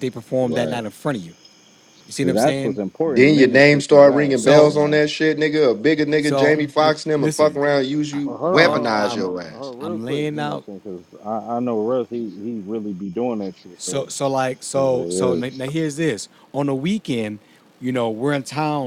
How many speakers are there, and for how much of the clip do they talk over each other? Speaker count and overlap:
three, about 38%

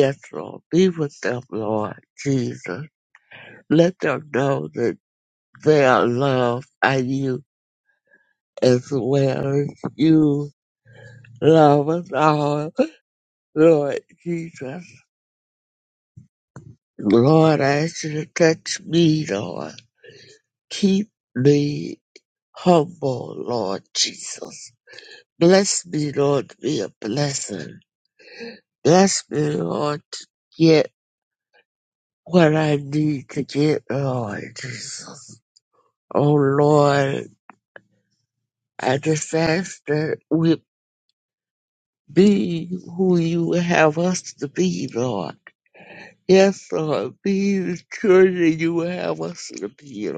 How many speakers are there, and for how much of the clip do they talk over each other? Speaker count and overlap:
one, no overlap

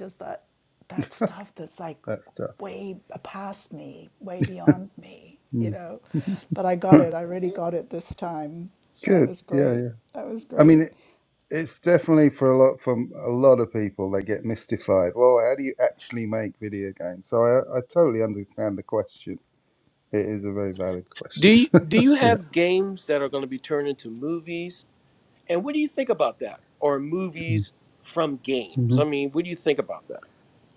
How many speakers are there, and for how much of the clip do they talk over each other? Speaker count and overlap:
three, about 5%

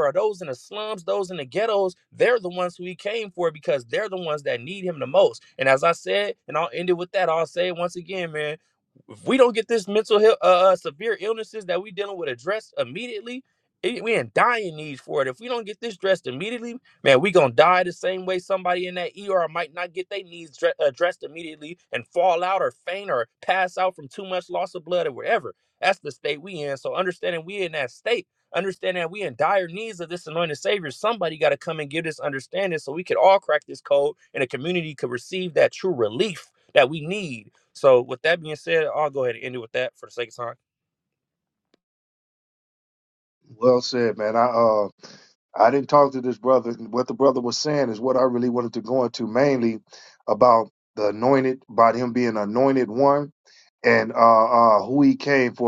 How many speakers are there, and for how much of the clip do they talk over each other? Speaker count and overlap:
two, no overlap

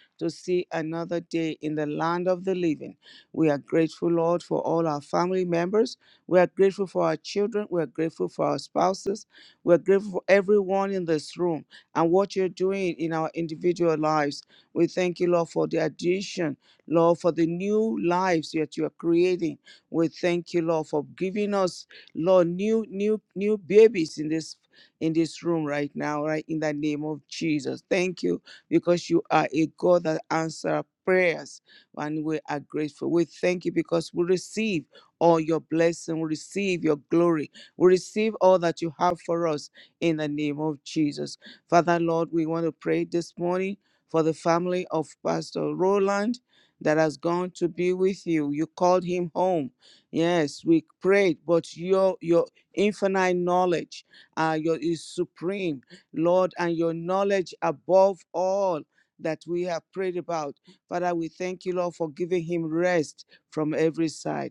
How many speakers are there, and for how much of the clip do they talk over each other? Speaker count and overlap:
one, no overlap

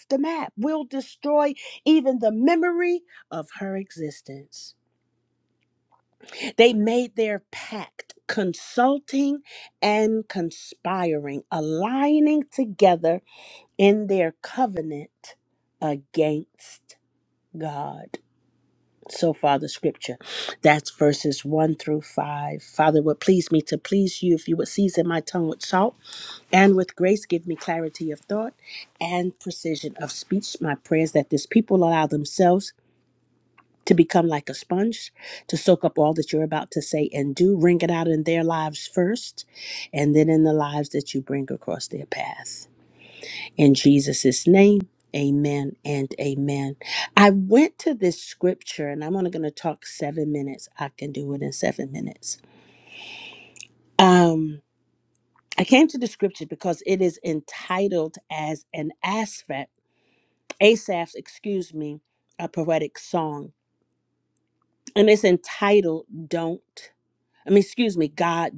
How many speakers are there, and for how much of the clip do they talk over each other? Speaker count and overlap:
one, no overlap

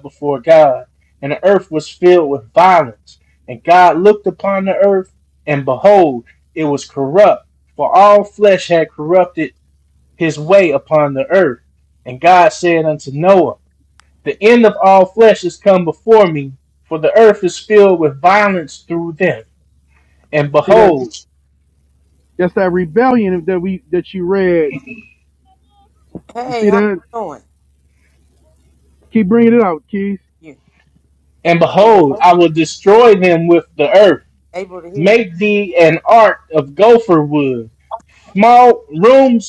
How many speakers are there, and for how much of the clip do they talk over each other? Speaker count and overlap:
three, about 3%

